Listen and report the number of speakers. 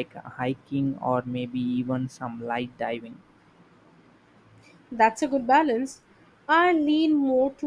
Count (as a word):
two